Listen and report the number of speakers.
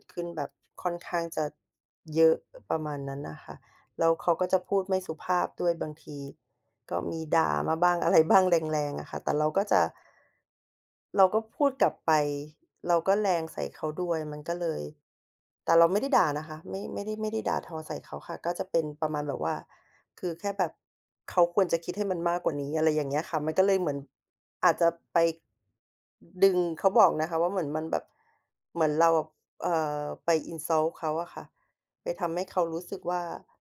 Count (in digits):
1